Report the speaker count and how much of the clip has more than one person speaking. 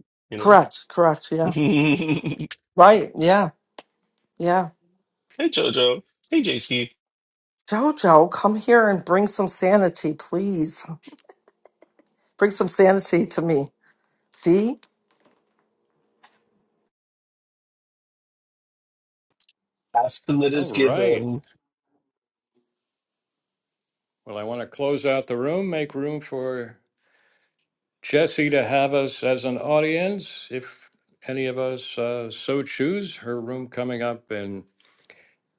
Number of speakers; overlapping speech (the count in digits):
3, about 3%